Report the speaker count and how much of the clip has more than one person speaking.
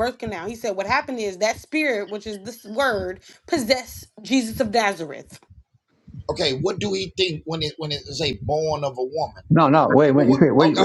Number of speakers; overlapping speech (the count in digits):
3, about 6%